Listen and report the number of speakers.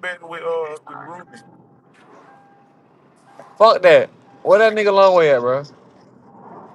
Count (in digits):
2